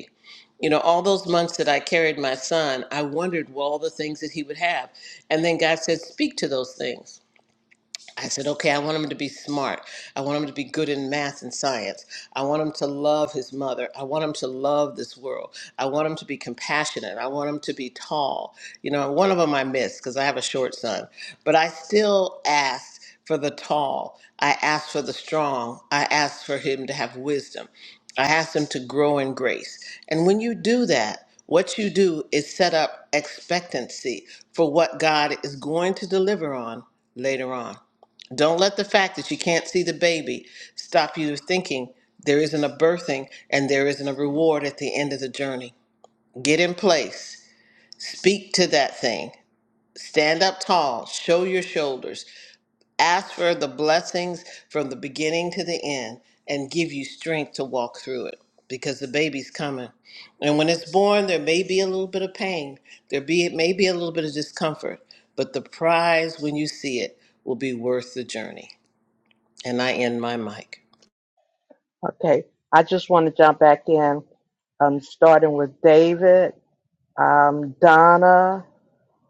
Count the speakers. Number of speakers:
two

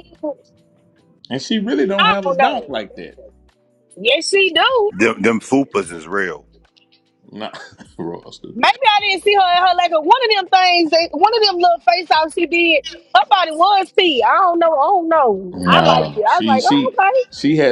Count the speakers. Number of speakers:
three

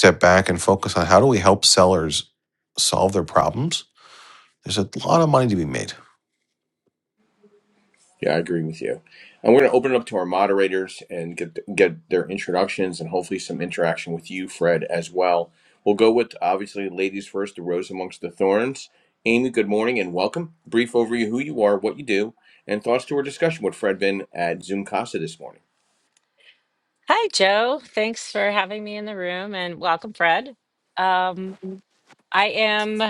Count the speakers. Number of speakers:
three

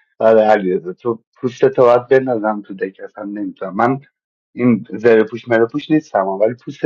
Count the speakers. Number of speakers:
one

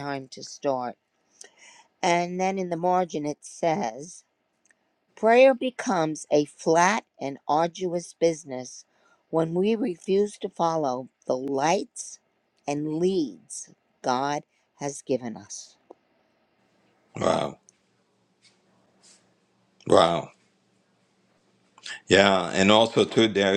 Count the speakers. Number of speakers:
two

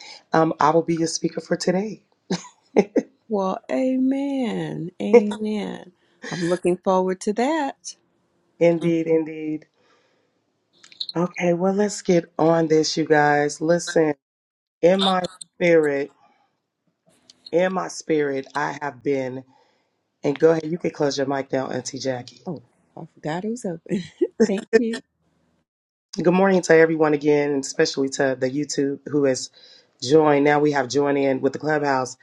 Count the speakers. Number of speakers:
two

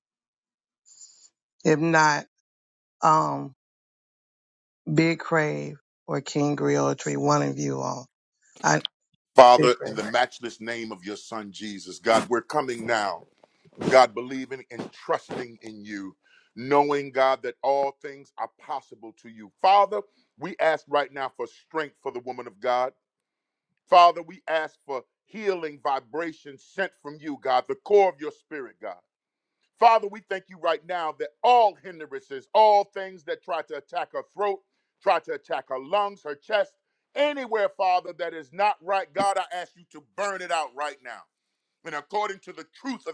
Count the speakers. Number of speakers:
two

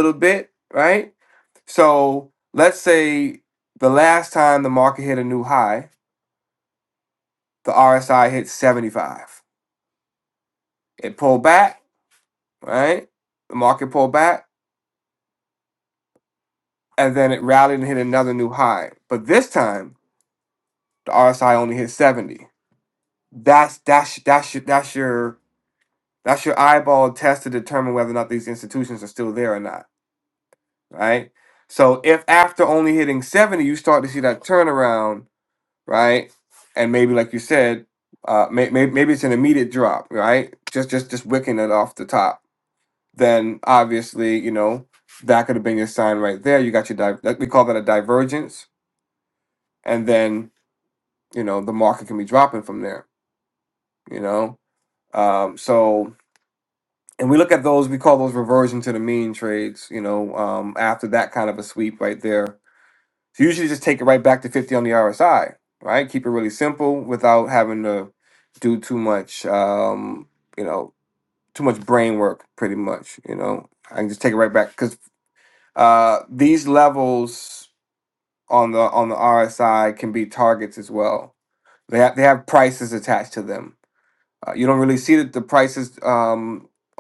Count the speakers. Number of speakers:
one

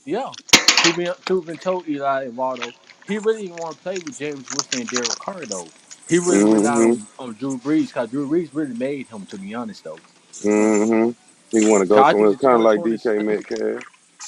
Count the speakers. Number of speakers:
two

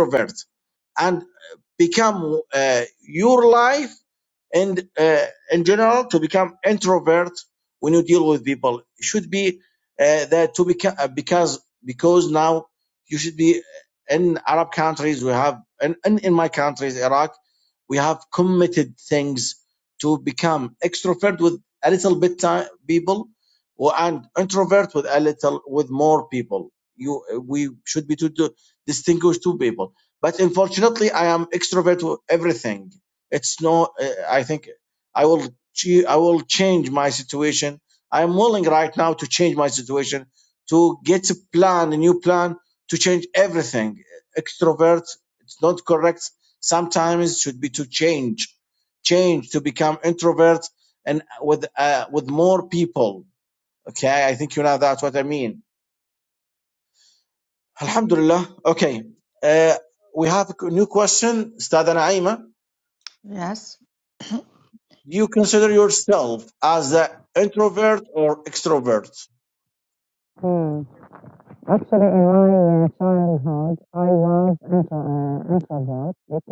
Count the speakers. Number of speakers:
two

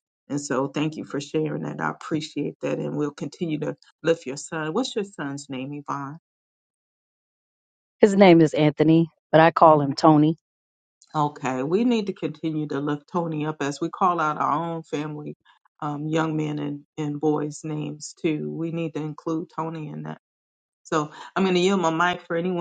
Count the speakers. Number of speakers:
two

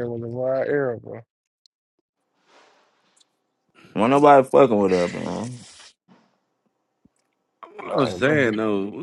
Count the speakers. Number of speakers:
three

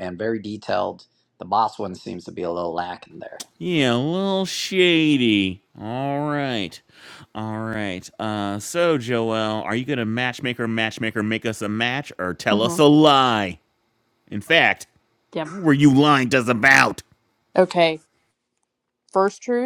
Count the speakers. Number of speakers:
three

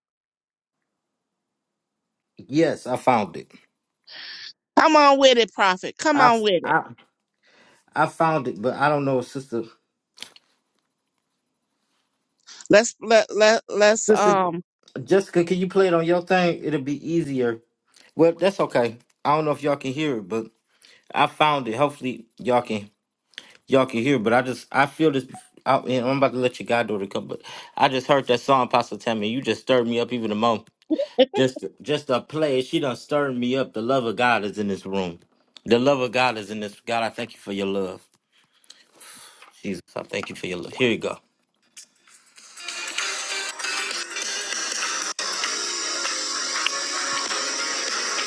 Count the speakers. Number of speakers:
two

